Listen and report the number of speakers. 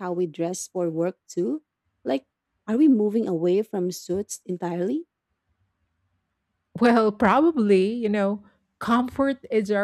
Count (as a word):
two